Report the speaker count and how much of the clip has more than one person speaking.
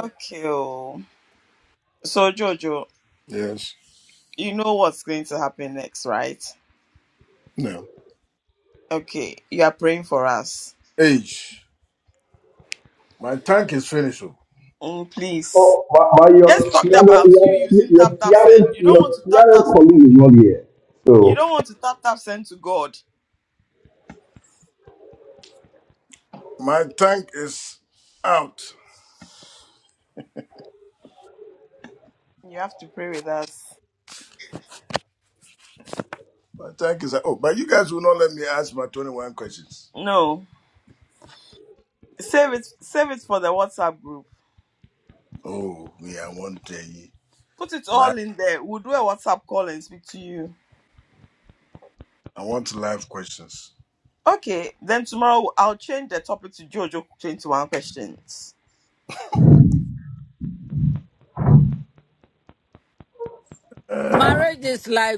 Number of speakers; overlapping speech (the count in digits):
4, about 6%